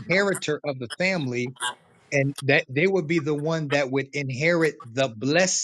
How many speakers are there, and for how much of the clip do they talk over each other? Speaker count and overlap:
1, no overlap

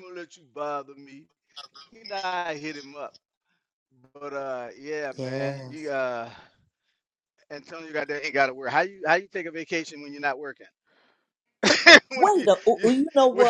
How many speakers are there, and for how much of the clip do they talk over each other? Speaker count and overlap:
2, about 11%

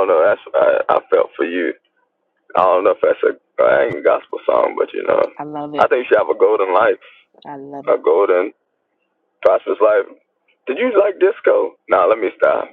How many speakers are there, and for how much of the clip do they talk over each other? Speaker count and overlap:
2, about 1%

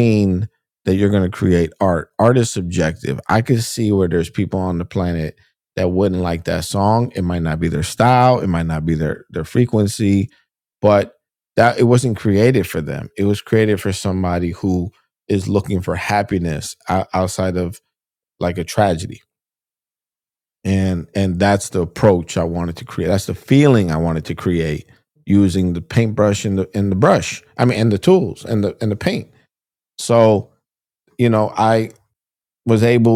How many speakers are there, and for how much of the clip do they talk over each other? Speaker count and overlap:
1, no overlap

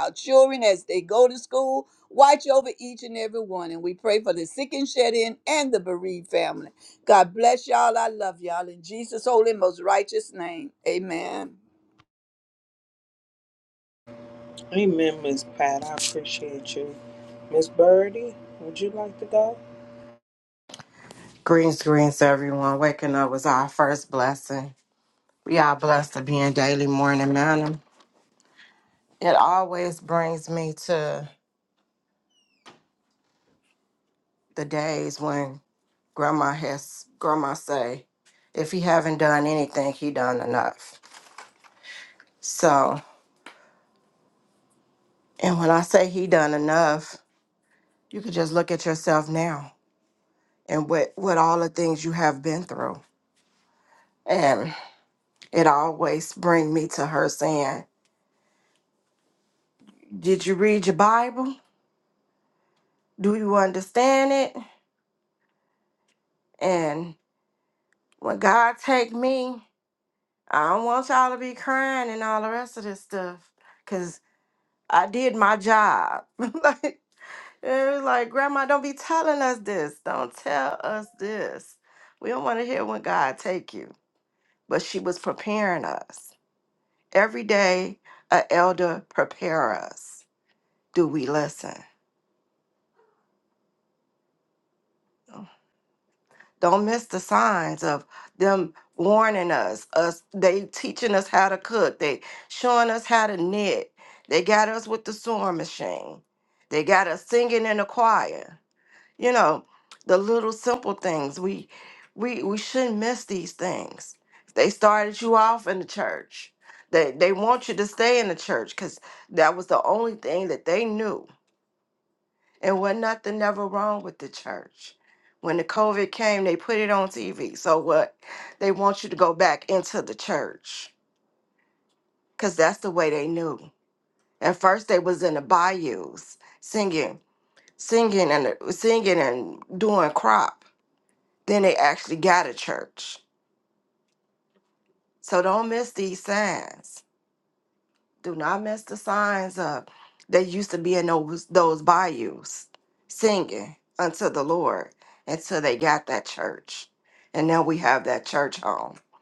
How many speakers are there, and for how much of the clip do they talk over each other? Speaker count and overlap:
3, no overlap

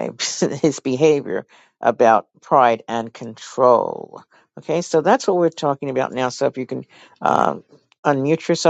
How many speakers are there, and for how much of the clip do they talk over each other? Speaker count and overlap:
1, no overlap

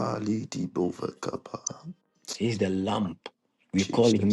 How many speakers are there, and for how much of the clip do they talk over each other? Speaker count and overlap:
2, about 11%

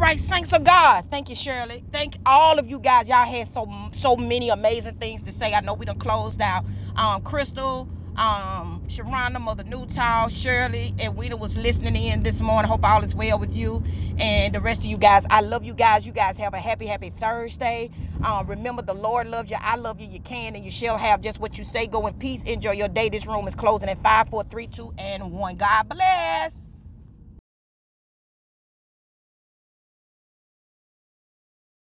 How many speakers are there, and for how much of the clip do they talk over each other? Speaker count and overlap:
1, no overlap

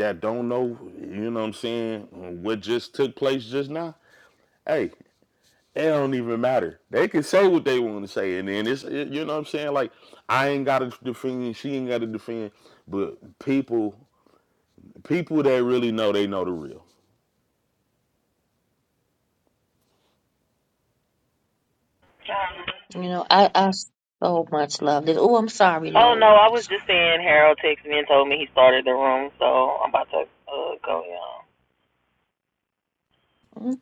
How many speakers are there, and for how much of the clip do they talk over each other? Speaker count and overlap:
3, about 3%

